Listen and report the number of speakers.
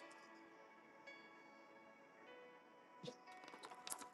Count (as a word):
zero